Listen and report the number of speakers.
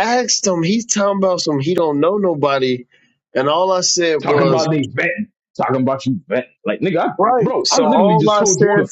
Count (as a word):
two